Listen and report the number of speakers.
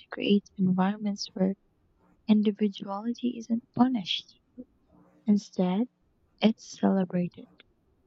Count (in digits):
1